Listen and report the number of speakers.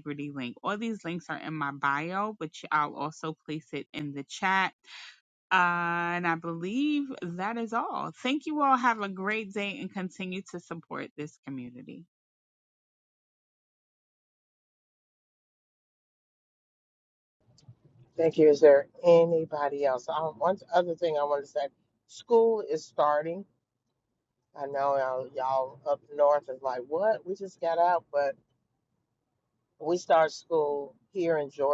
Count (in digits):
2